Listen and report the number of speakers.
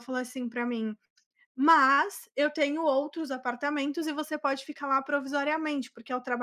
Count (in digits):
1